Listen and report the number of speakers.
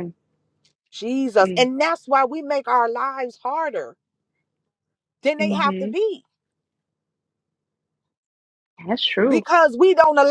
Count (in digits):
2